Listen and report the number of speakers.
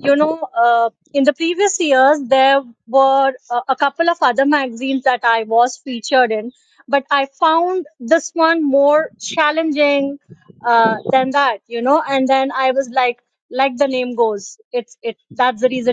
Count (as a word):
one